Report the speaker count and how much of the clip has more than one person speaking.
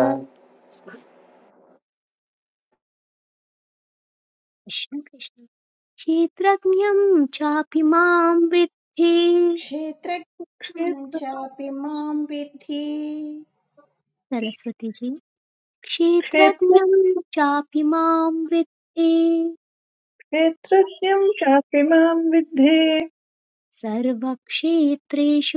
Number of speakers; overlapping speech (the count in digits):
3, about 2%